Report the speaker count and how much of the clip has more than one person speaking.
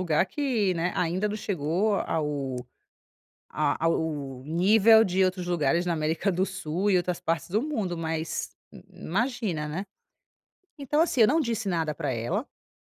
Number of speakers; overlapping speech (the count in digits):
1, no overlap